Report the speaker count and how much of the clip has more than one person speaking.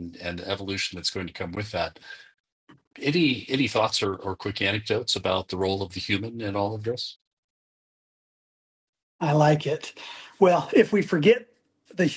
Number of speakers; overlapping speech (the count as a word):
two, no overlap